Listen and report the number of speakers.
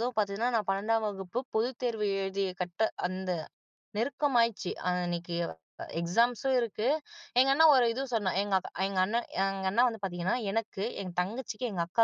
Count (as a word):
one